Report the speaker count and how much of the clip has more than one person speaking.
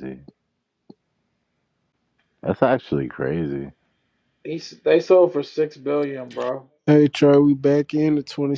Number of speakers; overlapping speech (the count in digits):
3, no overlap